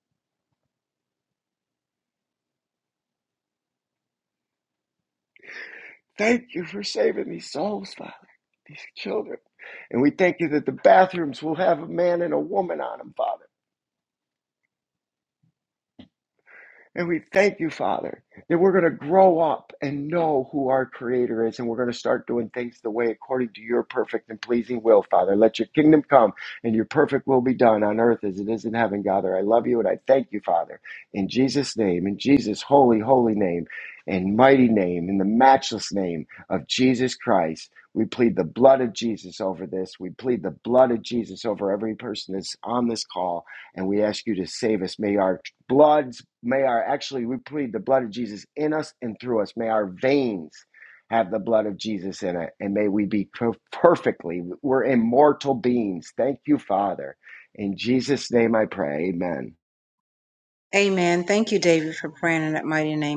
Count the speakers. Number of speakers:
2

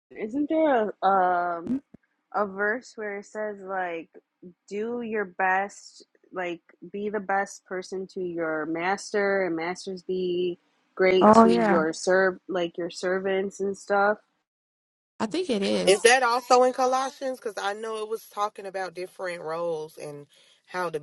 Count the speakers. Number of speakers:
3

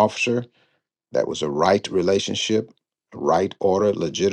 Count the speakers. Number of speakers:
1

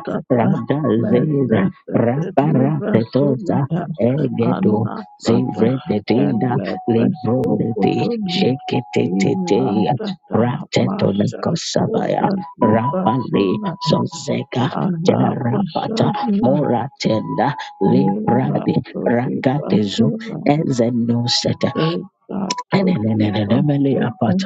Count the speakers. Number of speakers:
2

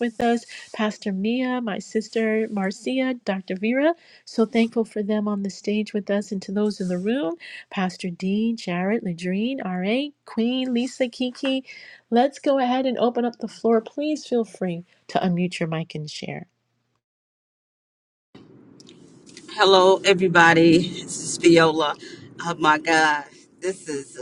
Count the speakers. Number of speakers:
2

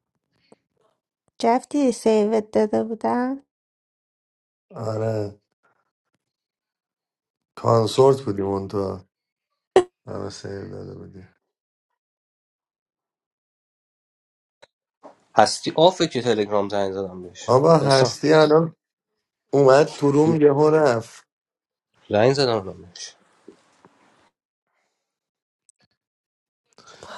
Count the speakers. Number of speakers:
3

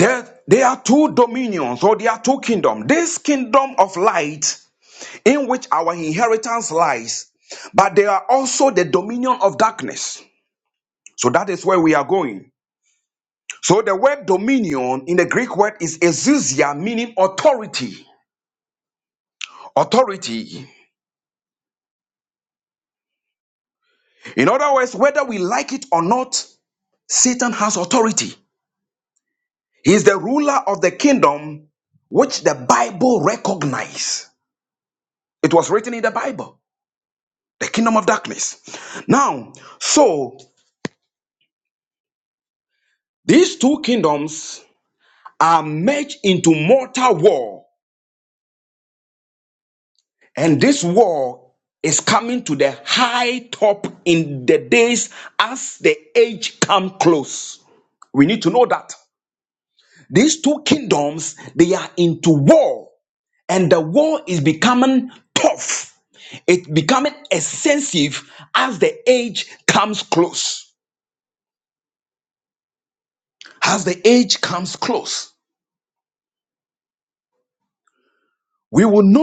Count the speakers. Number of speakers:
1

